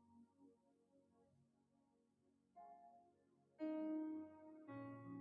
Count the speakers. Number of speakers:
0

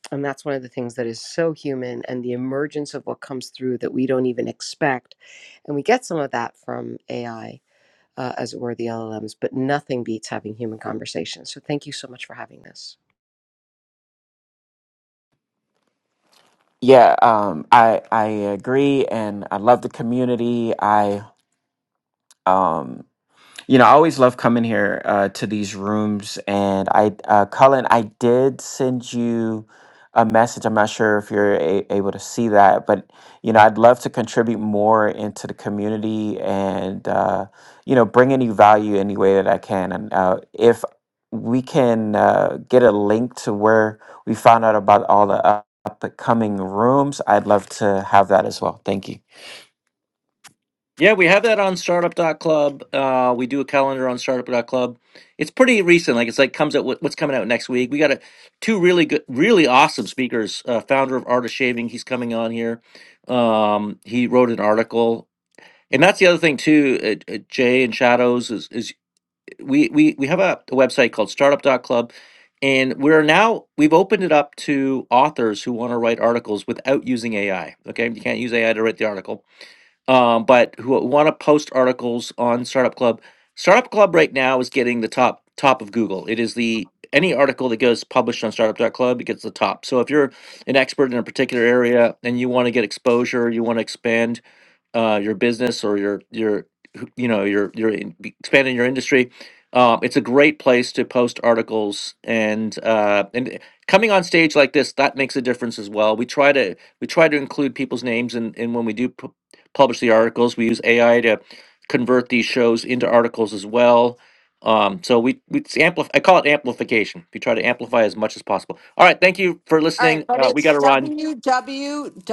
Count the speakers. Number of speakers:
4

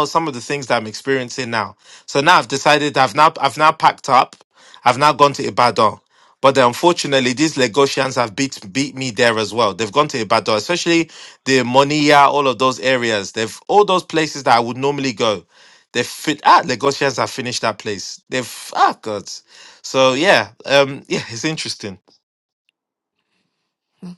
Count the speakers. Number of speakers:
1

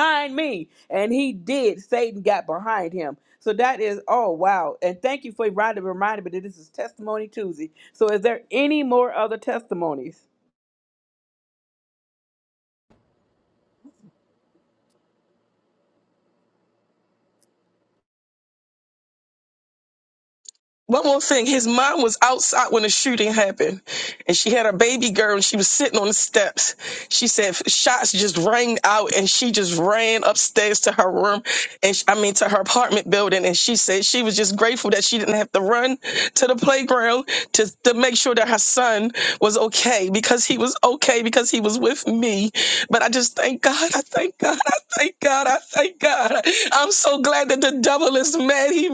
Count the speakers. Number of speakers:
2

